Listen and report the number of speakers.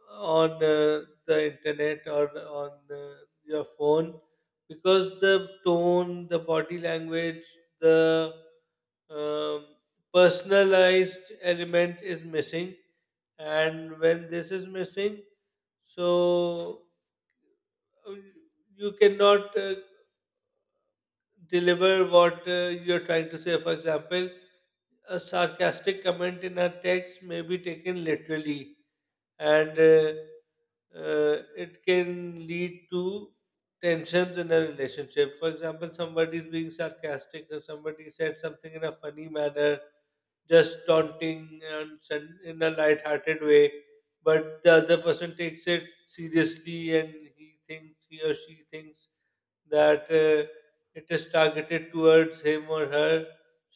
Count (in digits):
1